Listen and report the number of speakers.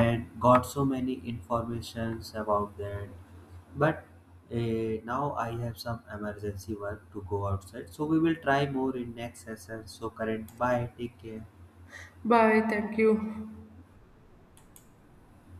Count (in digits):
2